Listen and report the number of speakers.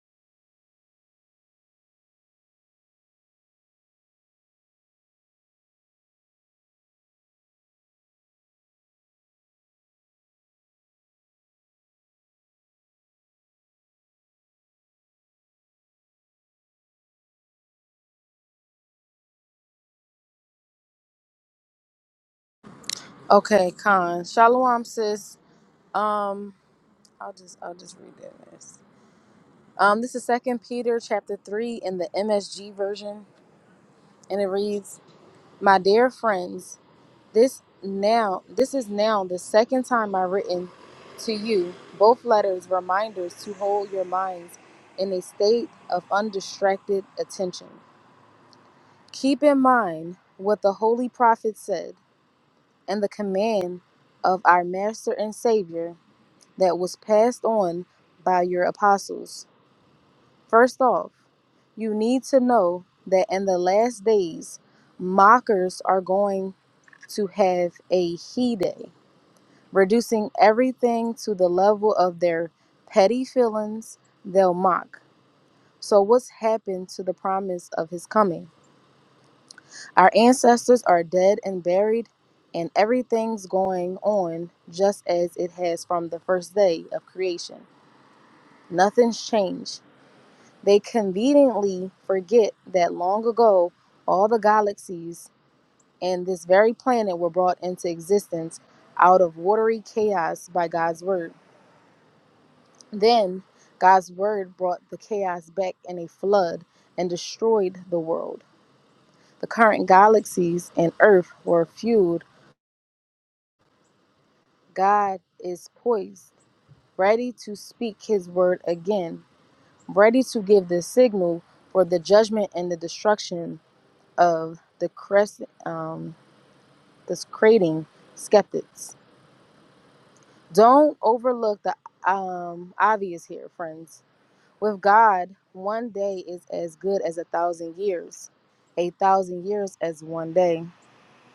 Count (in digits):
1